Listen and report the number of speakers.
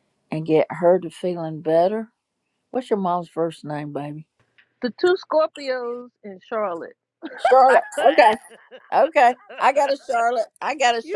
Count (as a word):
two